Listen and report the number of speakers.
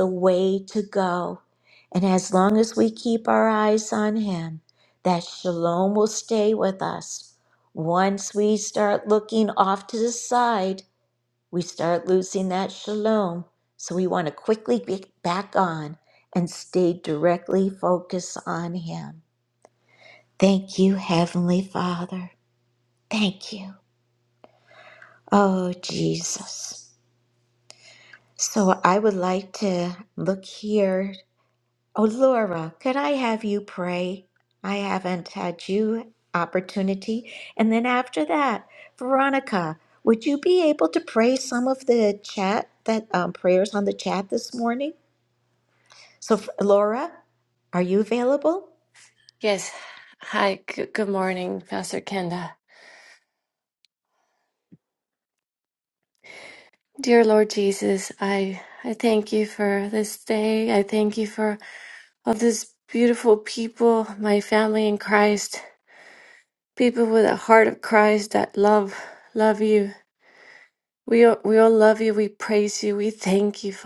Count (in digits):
2